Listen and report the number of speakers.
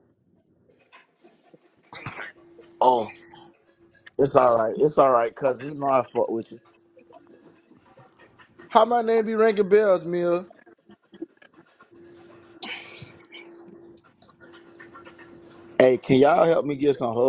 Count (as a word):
two